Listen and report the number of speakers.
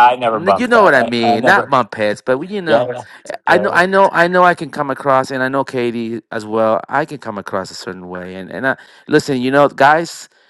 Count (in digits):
2